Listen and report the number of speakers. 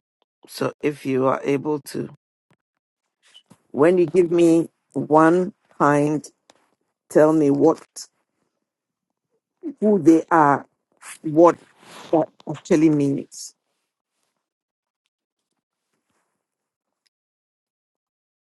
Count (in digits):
1